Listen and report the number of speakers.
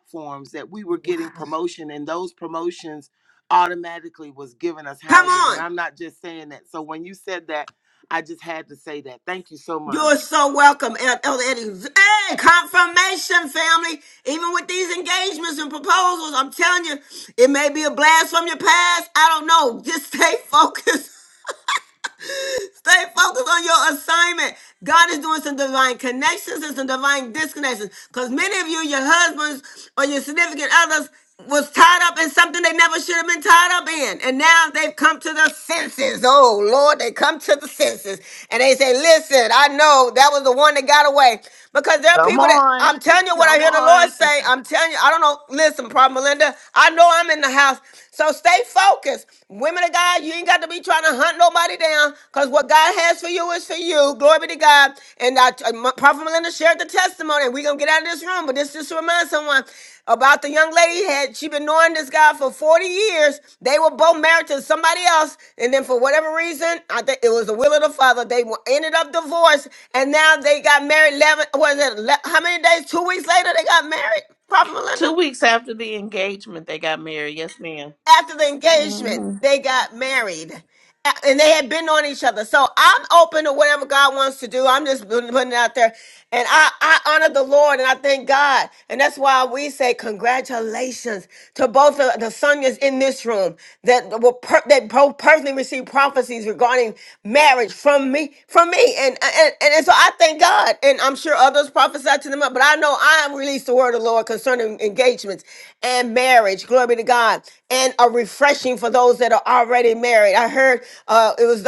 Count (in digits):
3